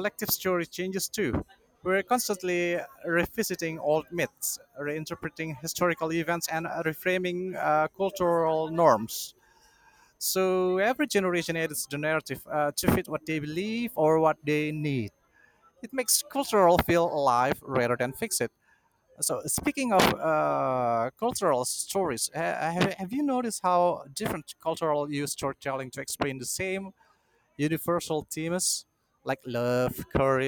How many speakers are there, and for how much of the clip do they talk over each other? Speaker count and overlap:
1, no overlap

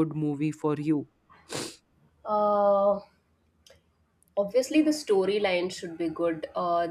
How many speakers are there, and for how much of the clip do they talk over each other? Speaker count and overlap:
2, no overlap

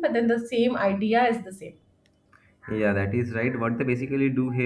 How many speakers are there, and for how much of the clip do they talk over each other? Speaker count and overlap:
2, no overlap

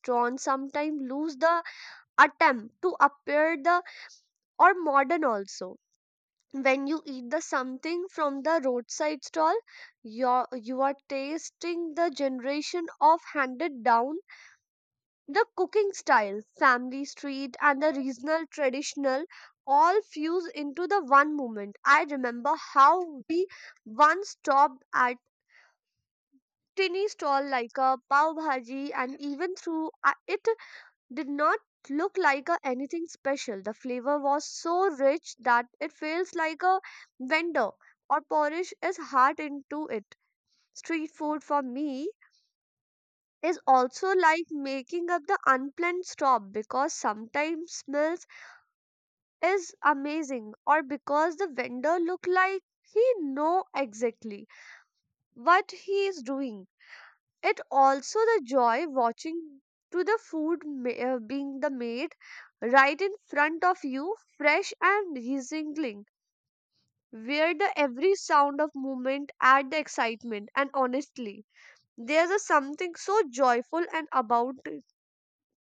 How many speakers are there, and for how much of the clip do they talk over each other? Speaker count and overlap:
1, no overlap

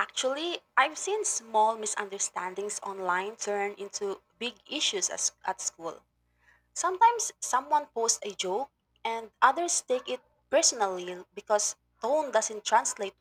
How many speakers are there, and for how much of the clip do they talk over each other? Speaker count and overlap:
1, no overlap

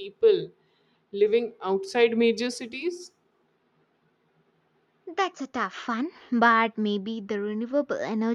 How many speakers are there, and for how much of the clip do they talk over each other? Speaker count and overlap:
2, no overlap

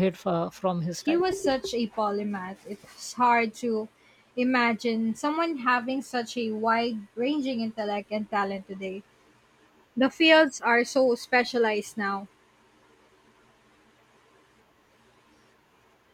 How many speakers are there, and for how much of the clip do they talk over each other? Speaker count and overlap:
2, about 1%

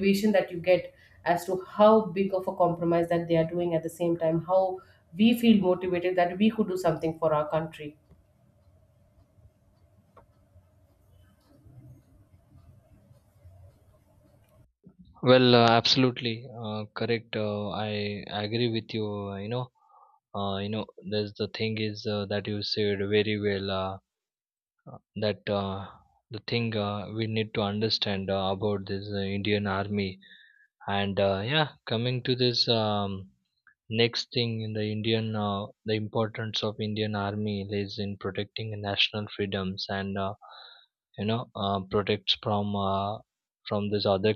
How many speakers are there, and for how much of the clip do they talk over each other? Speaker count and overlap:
2, no overlap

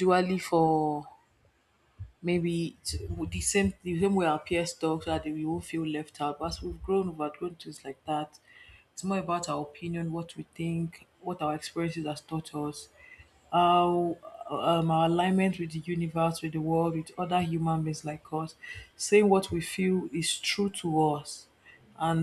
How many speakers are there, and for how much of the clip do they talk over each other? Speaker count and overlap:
1, no overlap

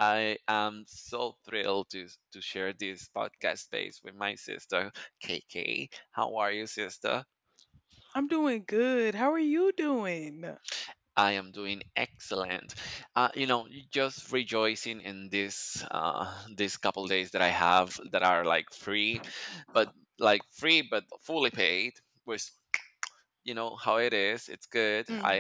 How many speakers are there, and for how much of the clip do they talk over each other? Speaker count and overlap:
2, about 1%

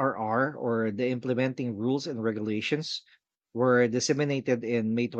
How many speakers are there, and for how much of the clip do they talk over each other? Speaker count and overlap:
1, no overlap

